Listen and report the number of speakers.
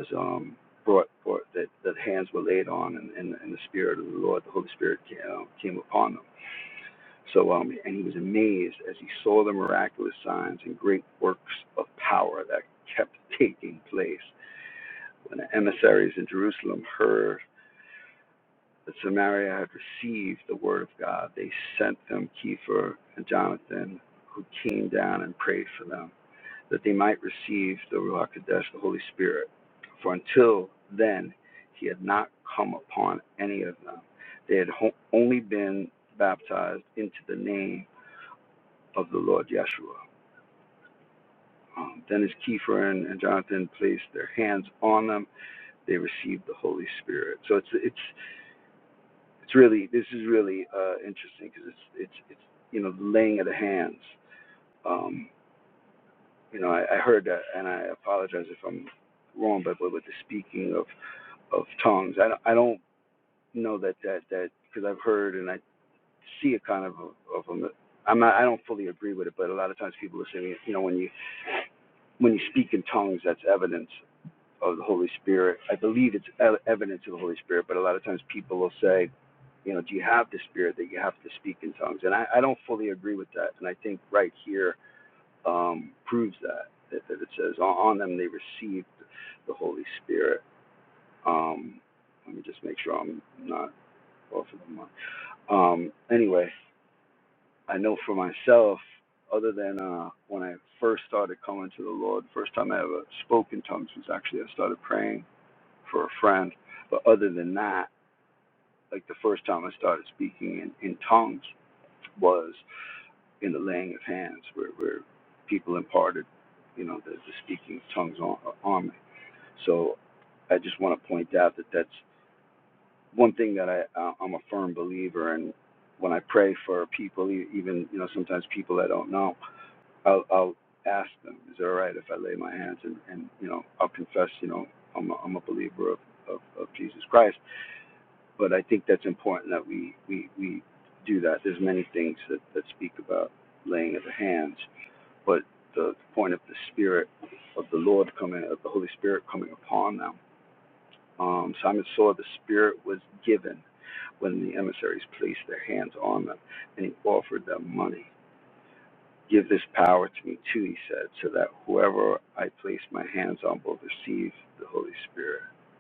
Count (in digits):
1